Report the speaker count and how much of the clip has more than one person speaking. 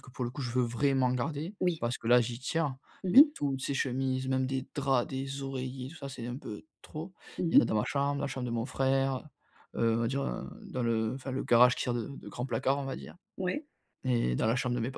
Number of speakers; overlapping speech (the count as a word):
two, about 4%